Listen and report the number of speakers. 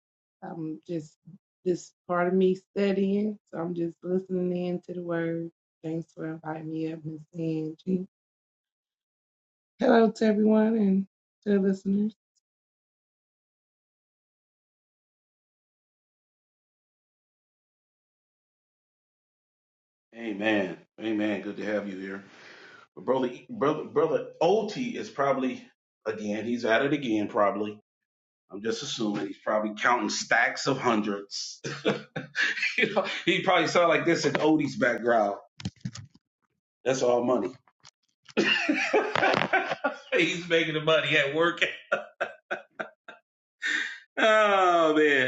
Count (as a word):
two